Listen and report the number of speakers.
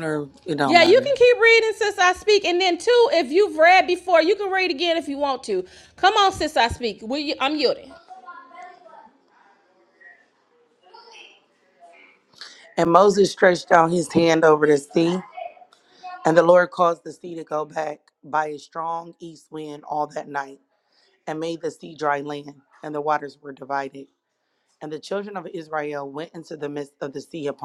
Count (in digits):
2